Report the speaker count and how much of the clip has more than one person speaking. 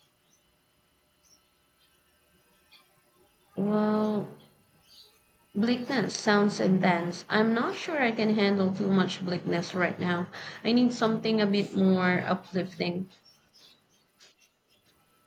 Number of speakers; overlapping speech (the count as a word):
one, no overlap